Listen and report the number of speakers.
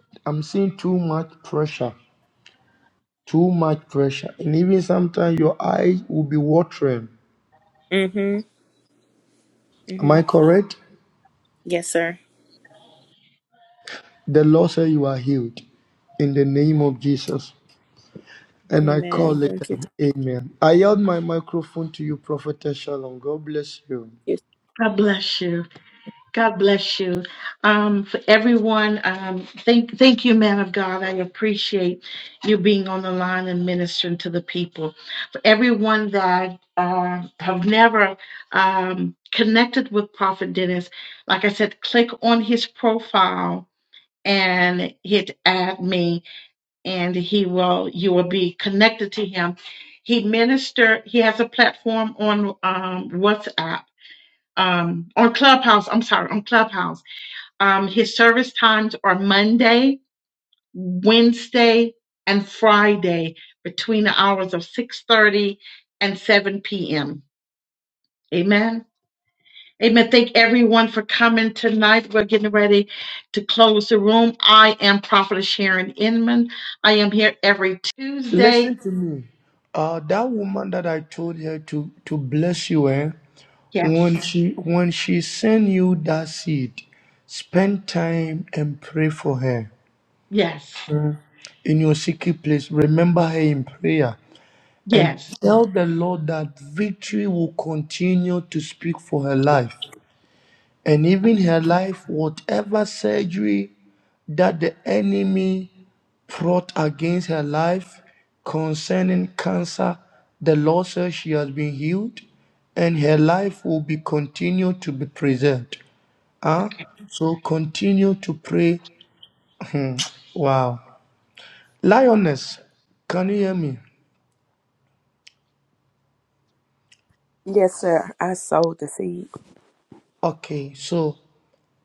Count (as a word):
four